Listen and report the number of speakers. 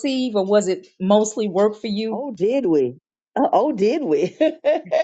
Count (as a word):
two